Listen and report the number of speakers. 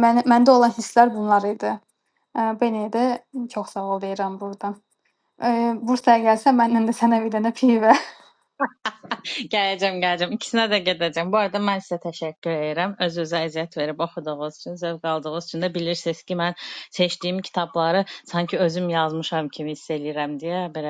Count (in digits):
2